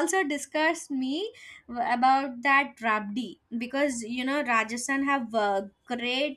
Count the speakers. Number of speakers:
1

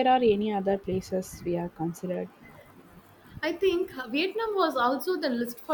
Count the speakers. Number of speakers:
2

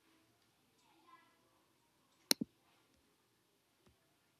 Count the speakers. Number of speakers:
0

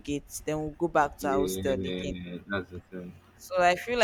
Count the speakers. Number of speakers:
2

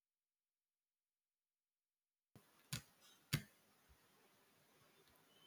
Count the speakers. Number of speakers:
0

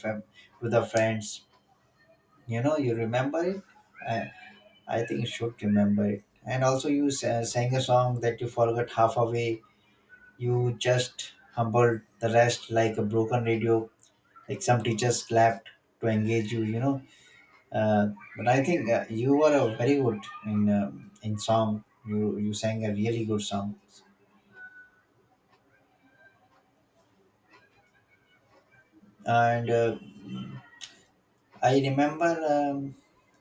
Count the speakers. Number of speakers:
1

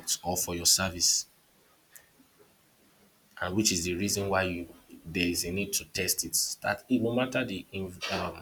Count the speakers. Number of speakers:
1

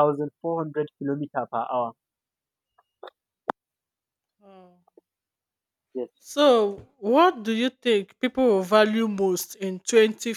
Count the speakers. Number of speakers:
2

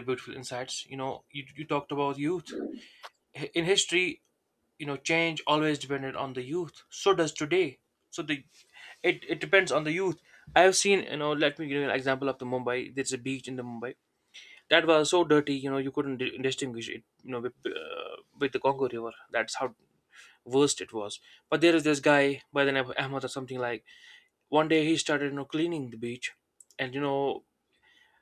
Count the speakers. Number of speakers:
1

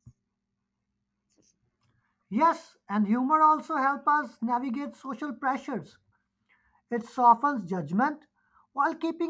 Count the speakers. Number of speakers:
1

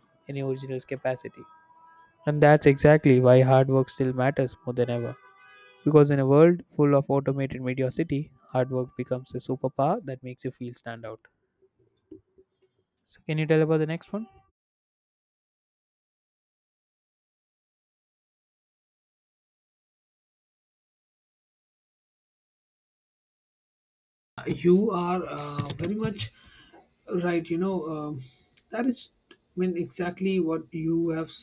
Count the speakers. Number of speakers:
2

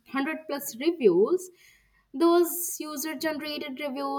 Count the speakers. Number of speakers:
1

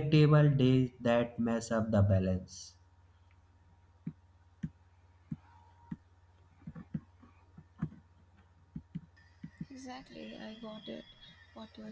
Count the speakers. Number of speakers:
2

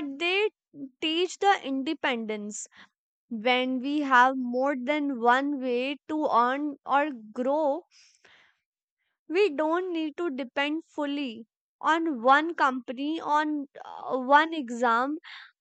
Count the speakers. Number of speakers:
1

